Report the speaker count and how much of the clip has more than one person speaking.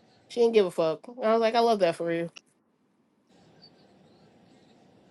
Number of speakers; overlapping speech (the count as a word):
one, no overlap